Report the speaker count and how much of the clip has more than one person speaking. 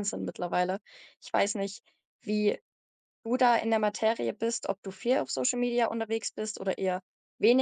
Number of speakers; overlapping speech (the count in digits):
1, no overlap